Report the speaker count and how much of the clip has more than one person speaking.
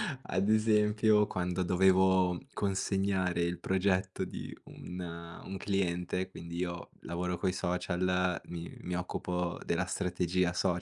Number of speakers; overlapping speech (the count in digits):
1, no overlap